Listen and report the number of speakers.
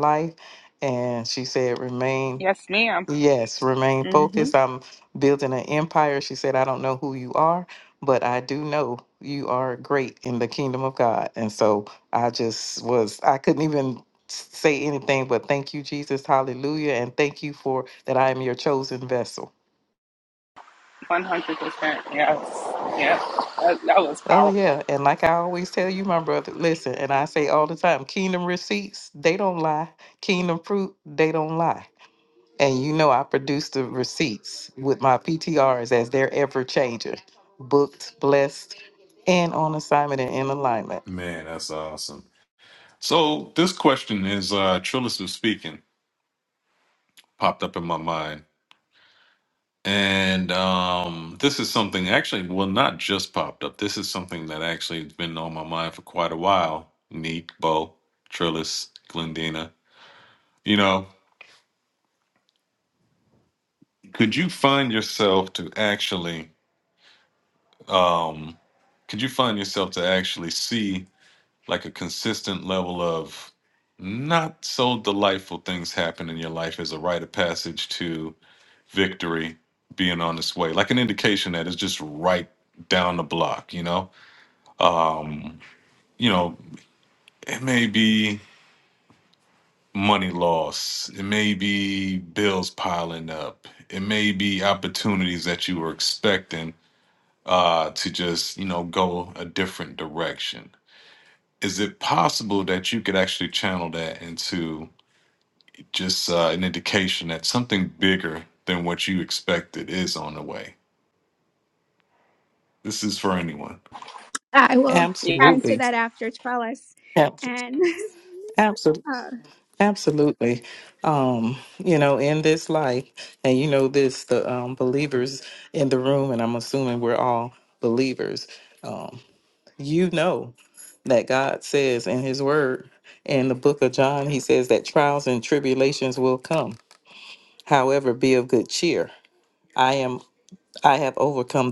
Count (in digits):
4